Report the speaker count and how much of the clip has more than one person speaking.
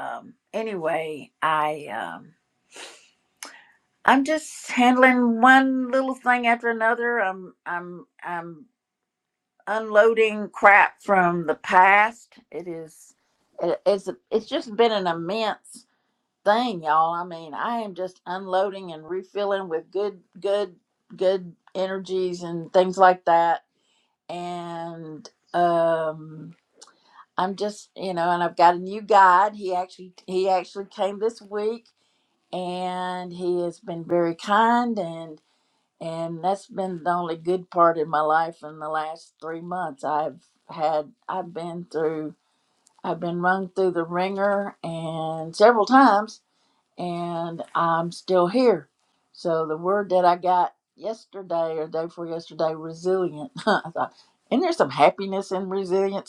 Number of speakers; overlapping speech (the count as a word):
one, no overlap